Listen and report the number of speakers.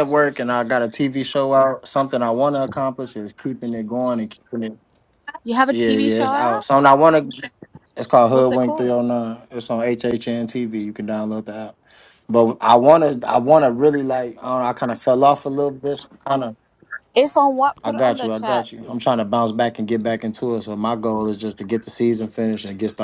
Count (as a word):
two